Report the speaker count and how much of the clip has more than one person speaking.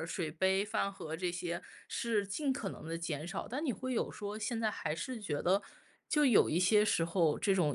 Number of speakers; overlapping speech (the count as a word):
one, no overlap